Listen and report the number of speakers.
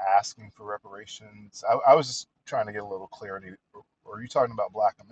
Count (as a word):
one